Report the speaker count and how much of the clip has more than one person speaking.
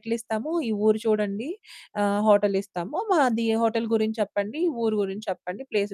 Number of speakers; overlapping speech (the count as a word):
one, no overlap